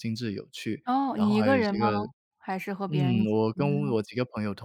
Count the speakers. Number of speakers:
2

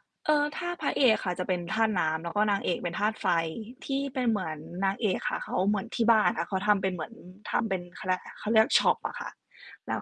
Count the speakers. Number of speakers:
1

